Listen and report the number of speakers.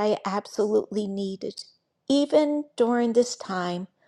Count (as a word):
one